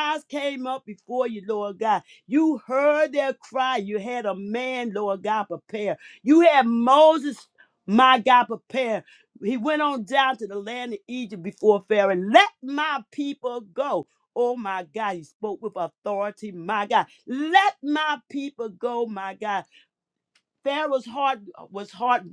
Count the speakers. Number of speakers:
1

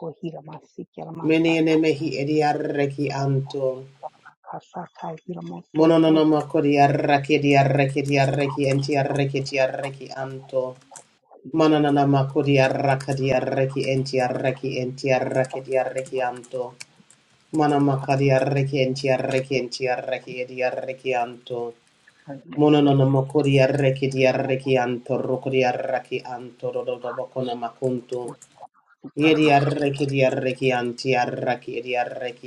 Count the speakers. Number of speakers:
2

